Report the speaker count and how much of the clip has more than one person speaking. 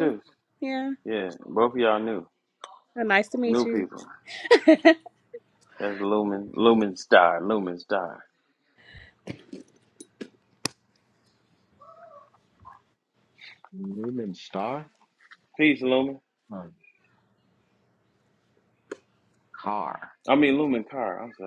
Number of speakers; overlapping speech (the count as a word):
three, about 2%